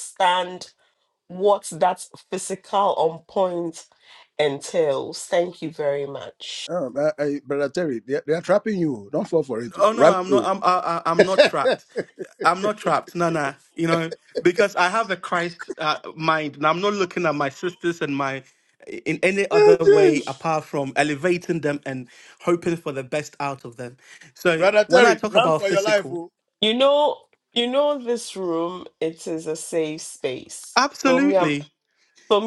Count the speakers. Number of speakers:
3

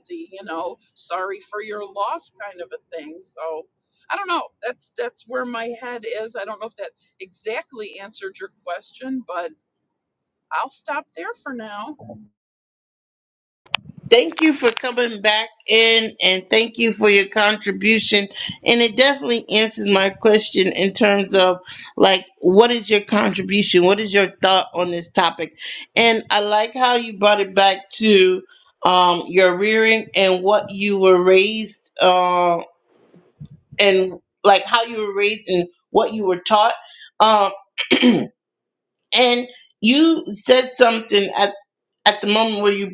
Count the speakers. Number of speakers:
2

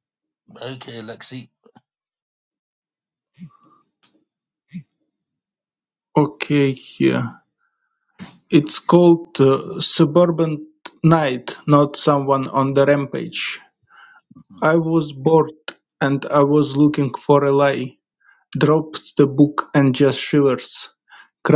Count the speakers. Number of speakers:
2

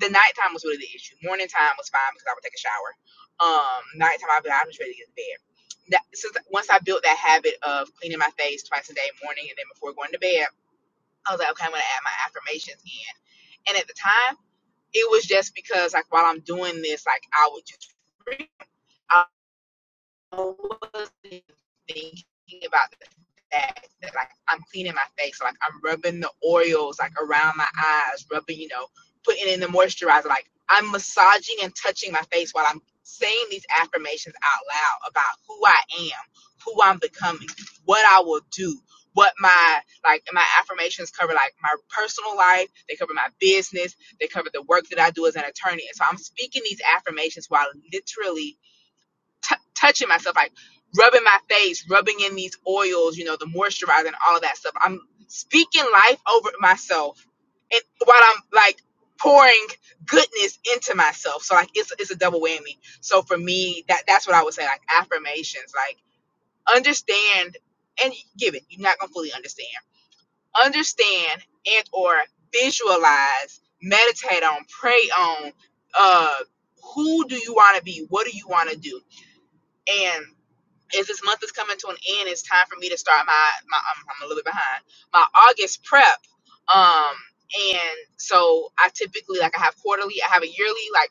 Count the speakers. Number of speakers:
1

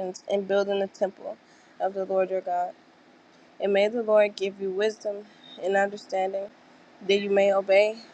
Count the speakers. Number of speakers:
1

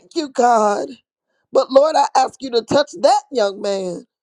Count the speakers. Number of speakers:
1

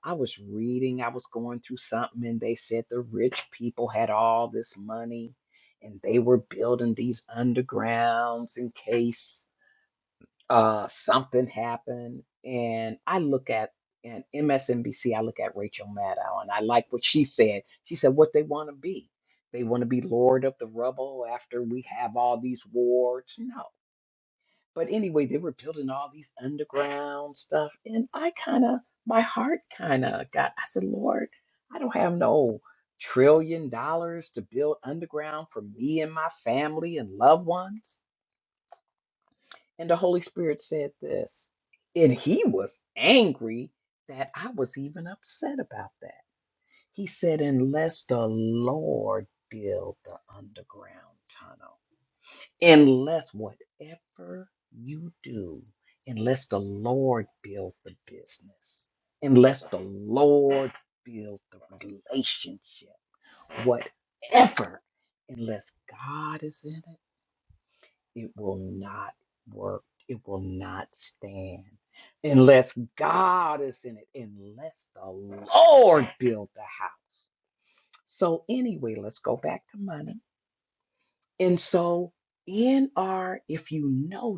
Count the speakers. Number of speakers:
1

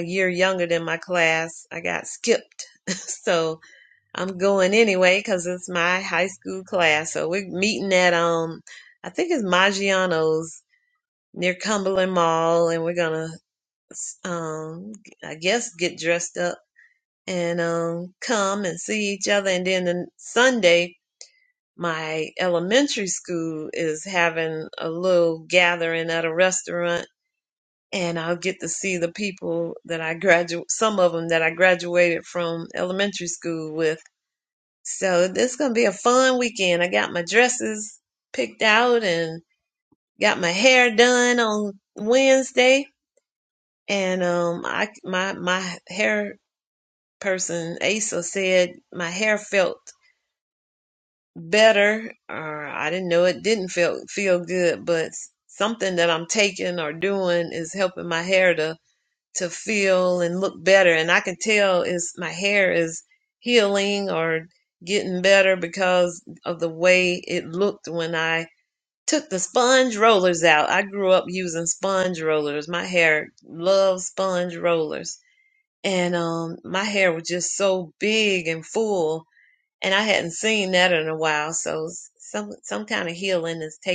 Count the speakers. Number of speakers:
1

